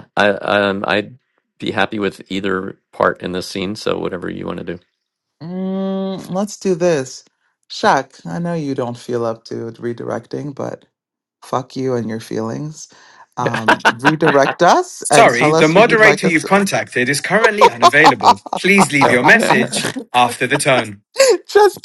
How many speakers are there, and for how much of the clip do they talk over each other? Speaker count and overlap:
three, about 10%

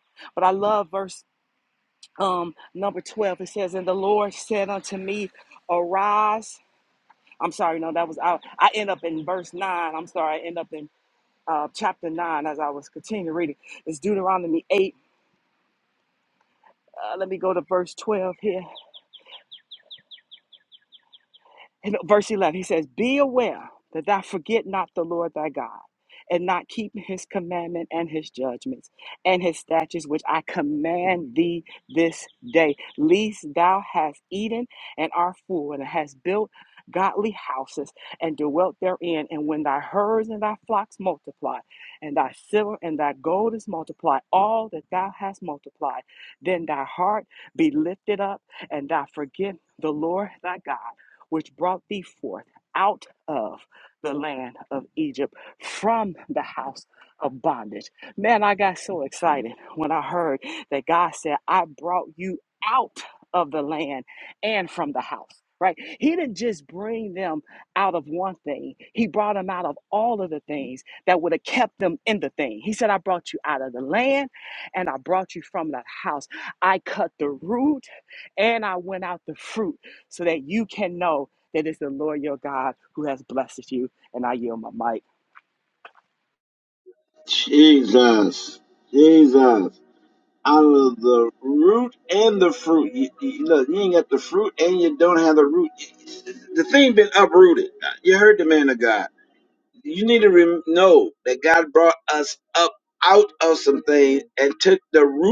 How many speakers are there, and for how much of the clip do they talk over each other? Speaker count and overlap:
two, no overlap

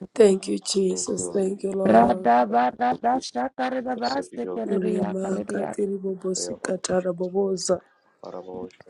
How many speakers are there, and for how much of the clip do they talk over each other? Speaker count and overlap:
three, about 40%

